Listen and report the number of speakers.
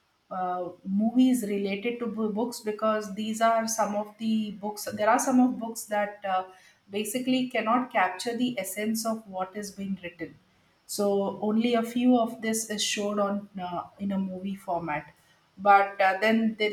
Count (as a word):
one